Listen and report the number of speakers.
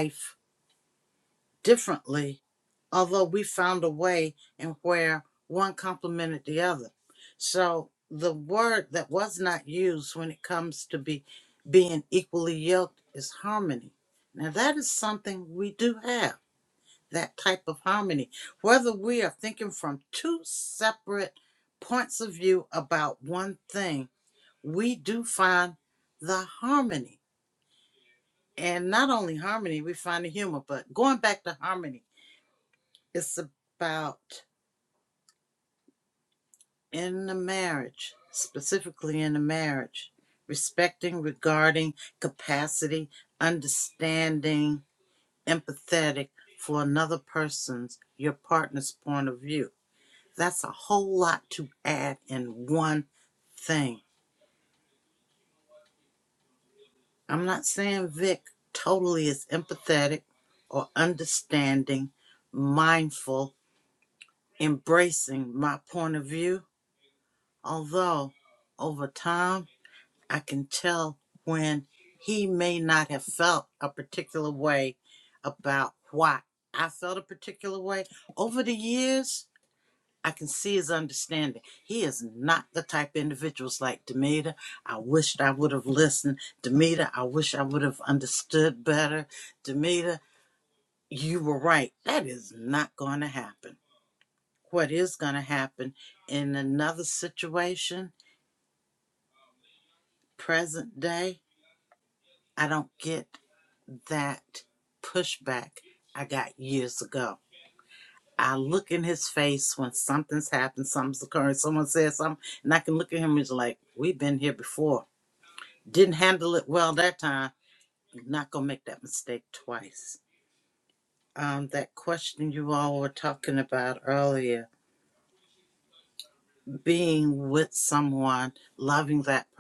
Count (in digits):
1